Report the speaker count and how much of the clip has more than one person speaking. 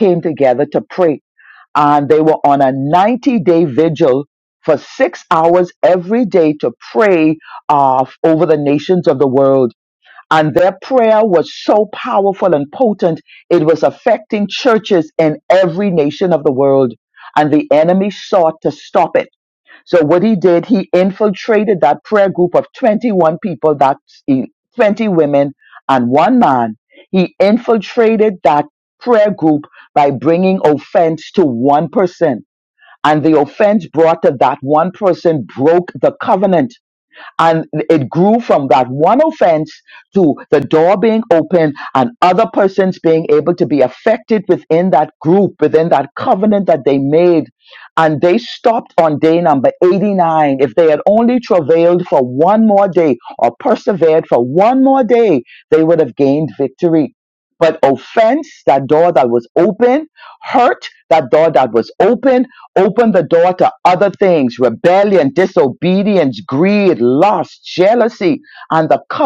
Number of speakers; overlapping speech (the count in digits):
1, no overlap